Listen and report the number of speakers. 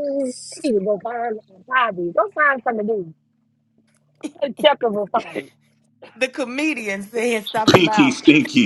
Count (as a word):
three